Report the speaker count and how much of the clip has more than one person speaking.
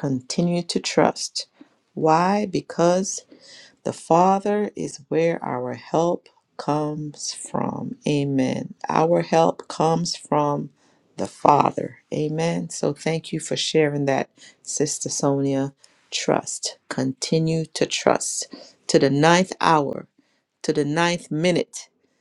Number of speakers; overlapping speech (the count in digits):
1, no overlap